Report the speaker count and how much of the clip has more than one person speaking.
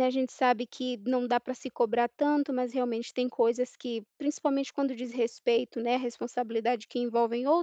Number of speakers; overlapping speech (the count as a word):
one, no overlap